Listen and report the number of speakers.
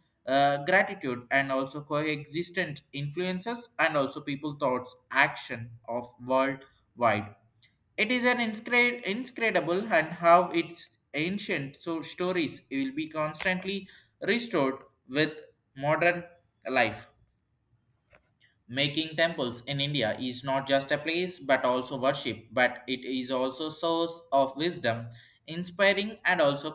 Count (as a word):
one